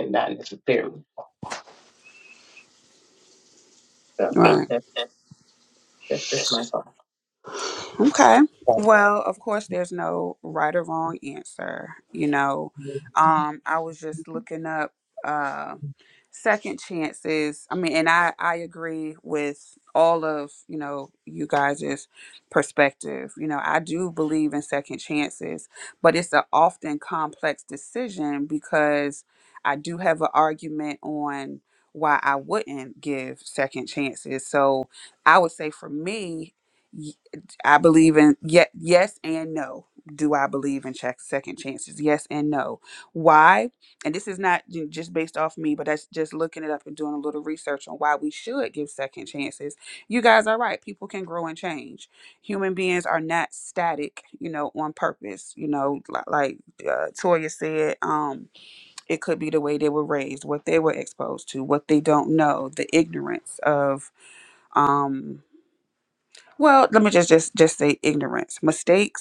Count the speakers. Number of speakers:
2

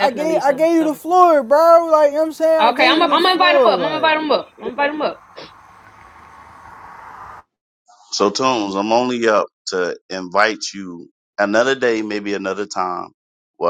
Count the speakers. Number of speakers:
3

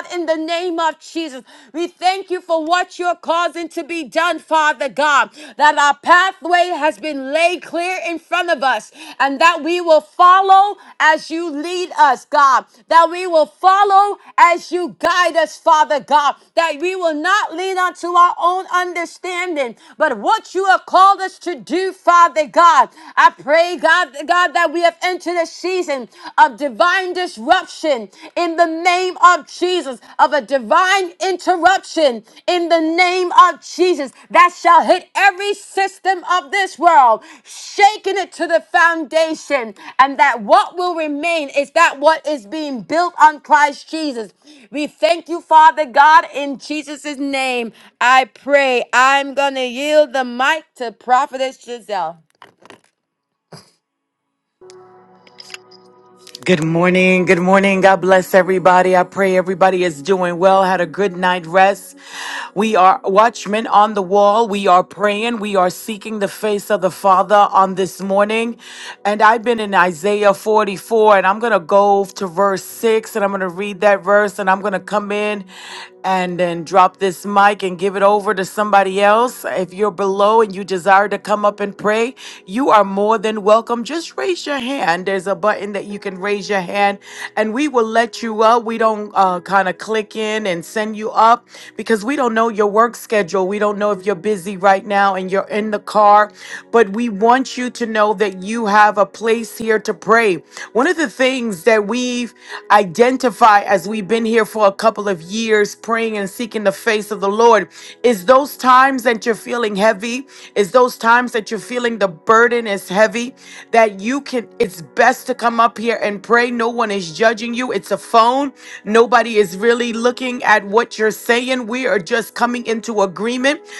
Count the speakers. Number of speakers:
2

